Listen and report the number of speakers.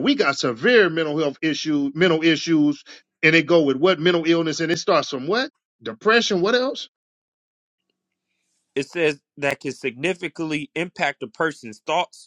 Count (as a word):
two